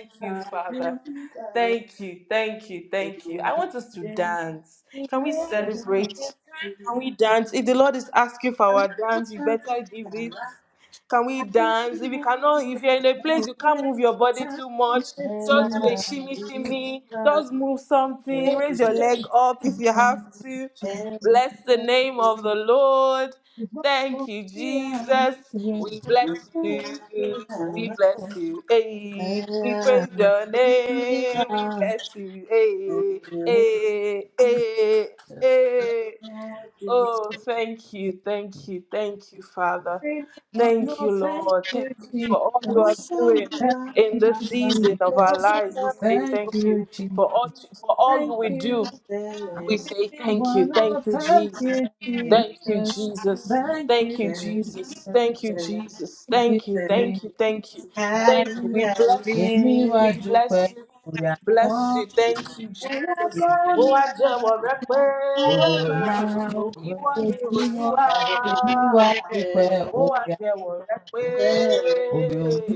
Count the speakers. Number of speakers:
three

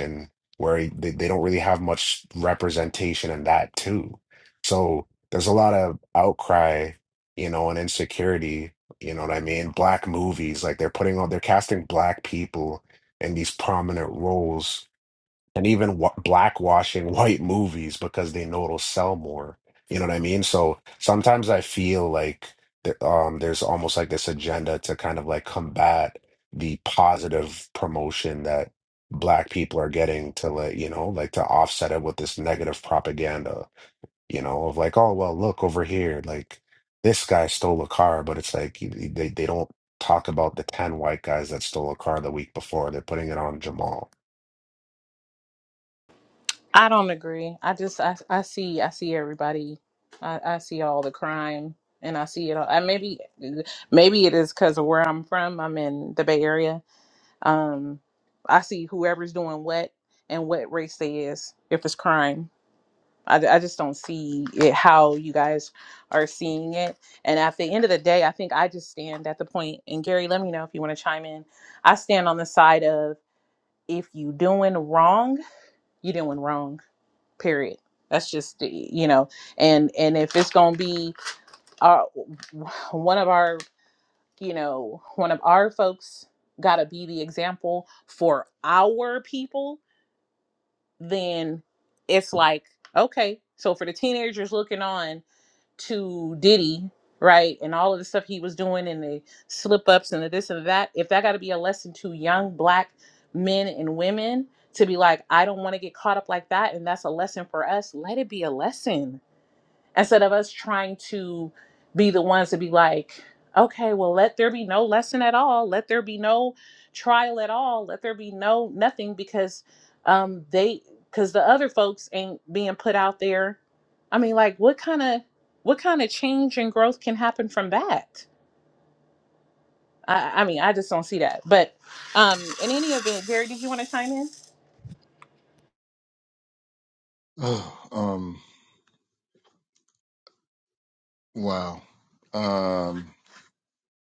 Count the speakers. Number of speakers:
three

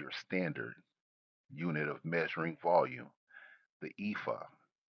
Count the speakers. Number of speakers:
one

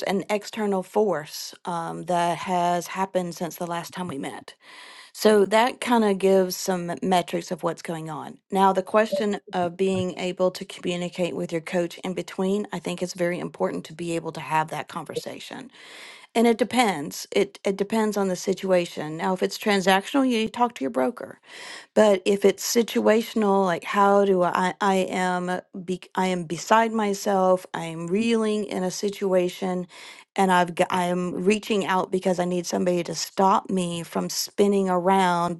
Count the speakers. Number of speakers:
one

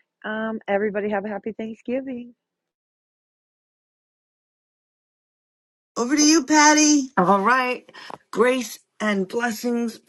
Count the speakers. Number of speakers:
three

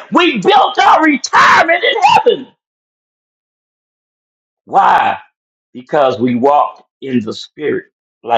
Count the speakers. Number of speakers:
one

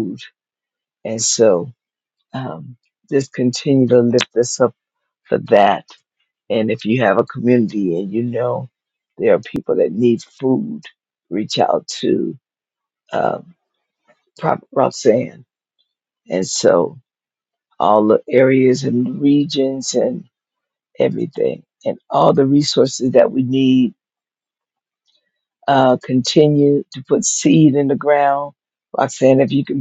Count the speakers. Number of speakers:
one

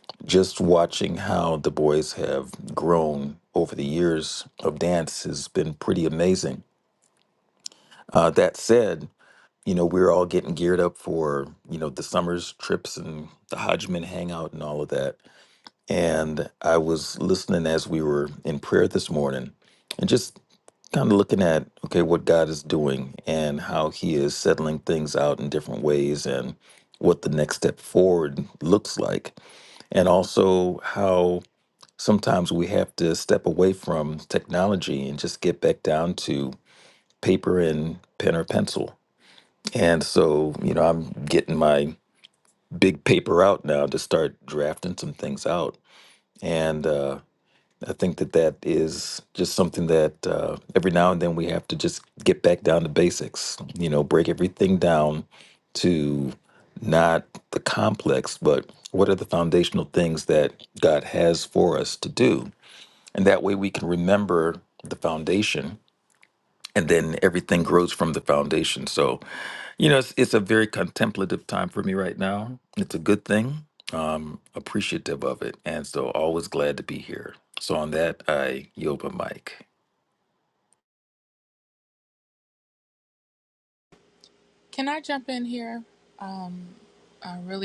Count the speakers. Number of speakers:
two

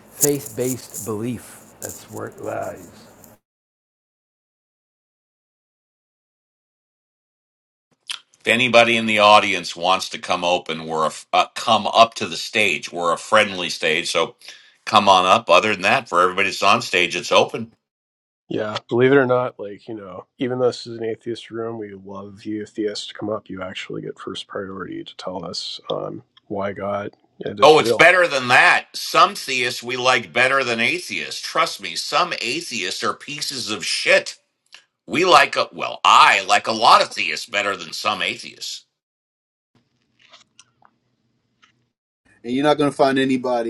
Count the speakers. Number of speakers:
four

